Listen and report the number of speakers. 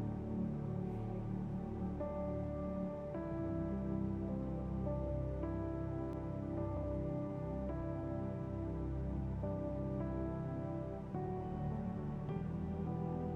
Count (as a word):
zero